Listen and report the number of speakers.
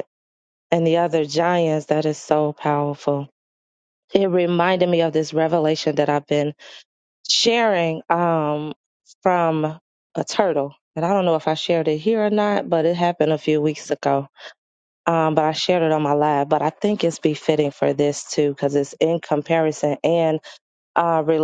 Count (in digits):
1